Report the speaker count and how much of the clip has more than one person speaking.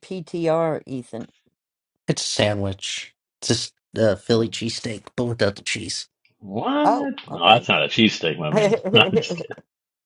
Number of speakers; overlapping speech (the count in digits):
3, about 20%